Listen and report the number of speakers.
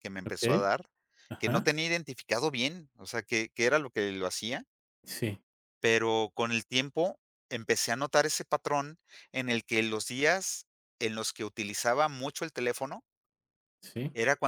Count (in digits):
2